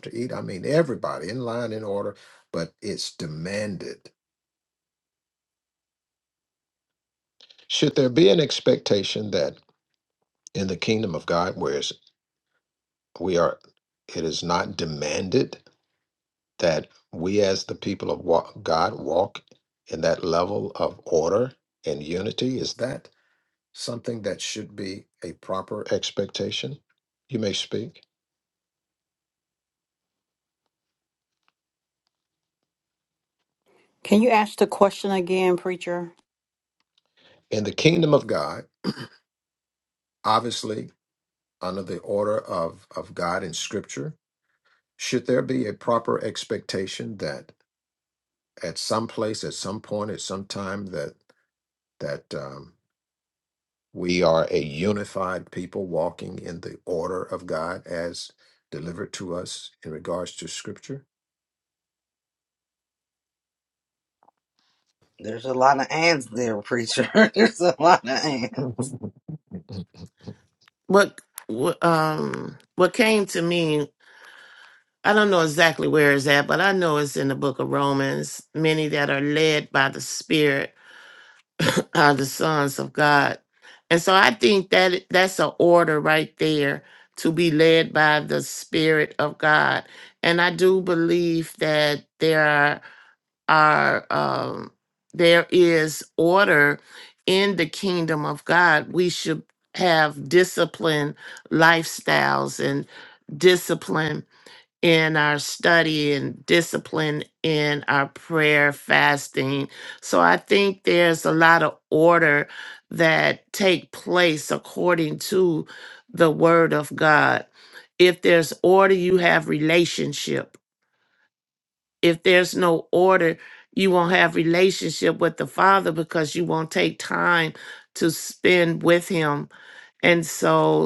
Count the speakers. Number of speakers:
4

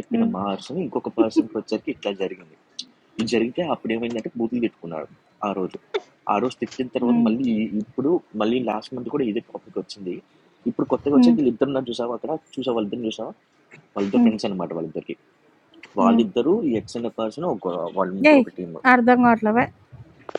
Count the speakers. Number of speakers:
2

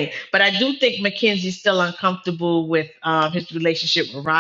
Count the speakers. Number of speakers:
1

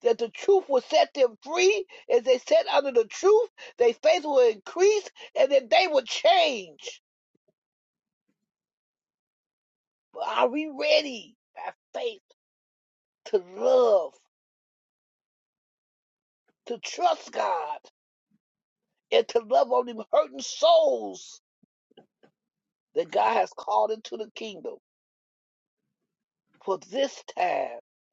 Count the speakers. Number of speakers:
1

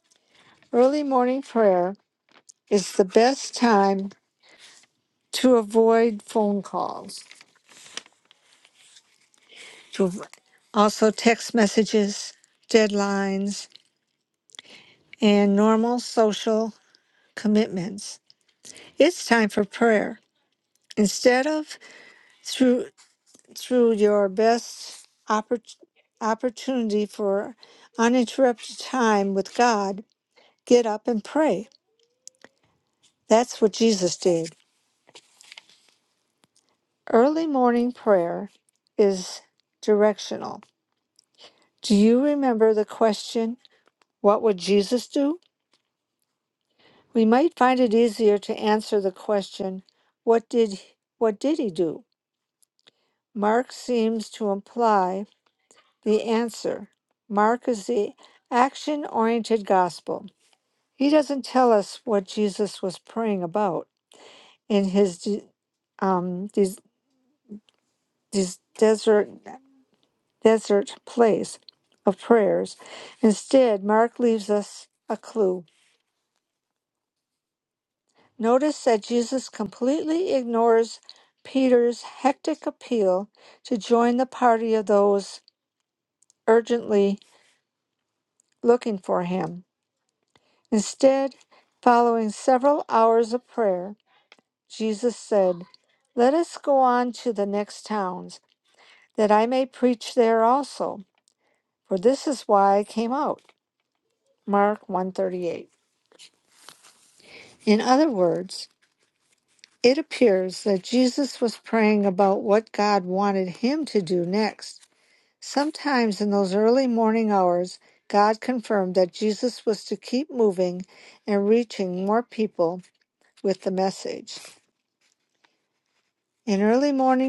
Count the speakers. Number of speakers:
1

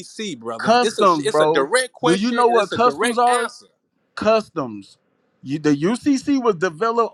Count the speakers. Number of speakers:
2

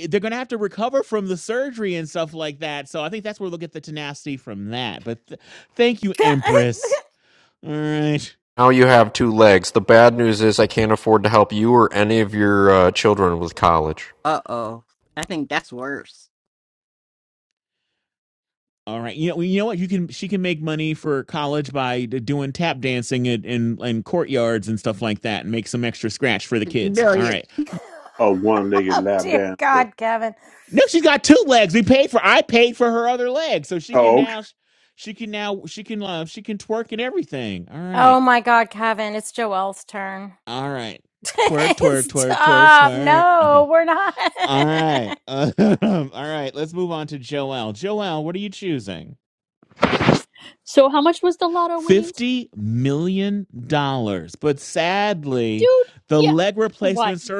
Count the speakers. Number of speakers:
6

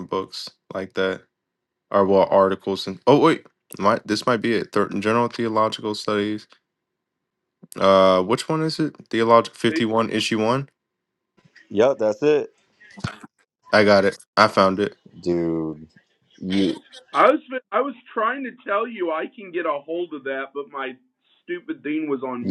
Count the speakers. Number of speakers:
3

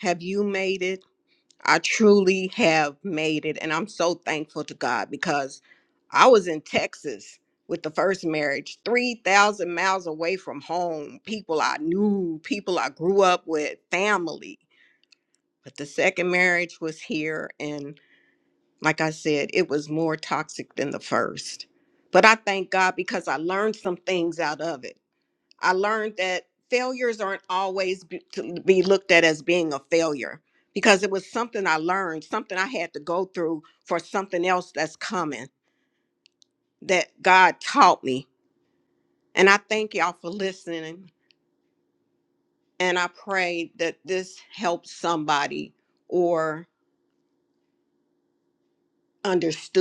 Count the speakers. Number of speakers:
1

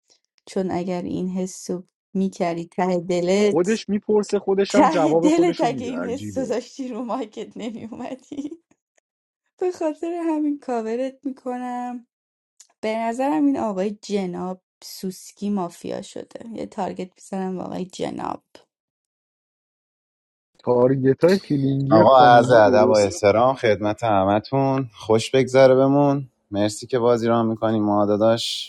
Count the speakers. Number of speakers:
3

